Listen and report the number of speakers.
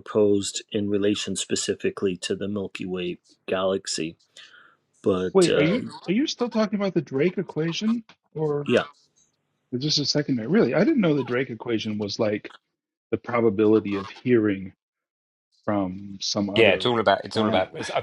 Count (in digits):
3